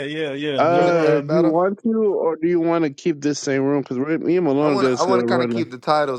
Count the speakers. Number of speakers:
3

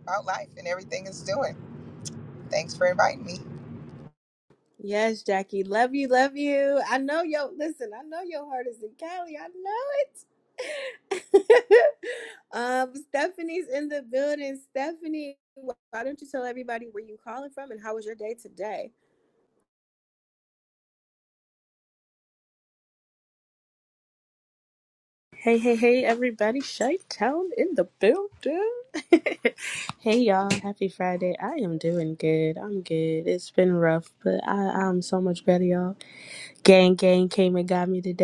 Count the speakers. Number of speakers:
3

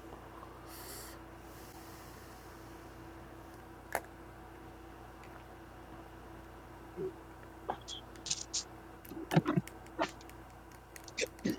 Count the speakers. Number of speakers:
0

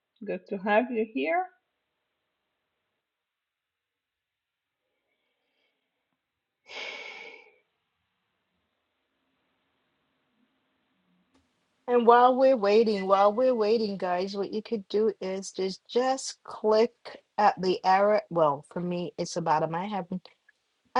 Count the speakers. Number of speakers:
2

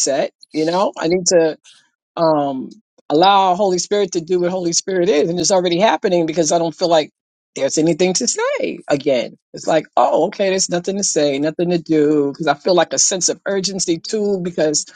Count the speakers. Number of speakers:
1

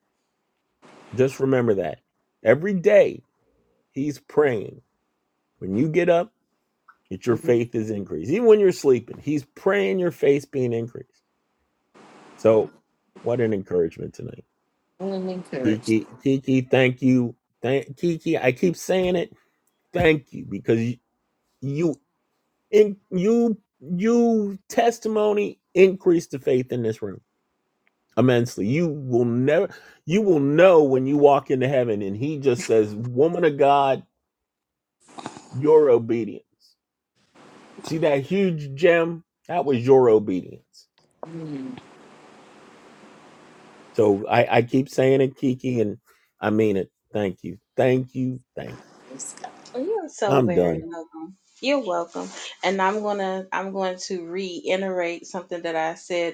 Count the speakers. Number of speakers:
3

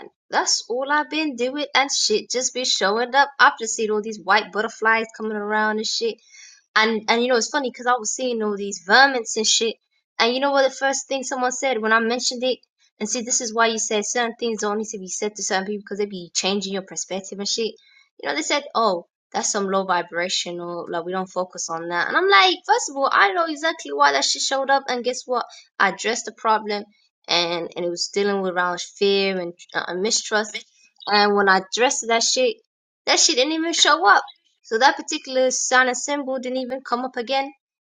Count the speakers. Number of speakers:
1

